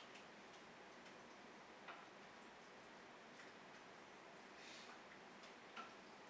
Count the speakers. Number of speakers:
0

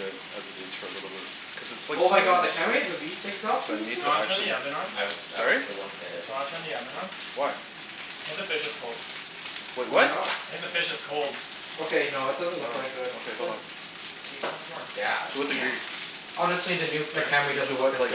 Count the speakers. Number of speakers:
4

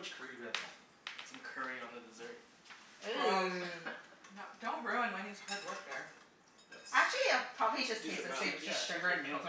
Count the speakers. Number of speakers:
4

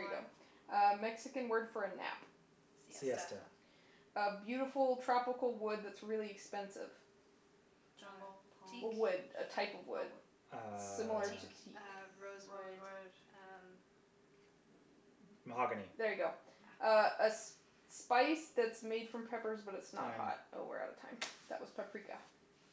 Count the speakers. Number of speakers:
4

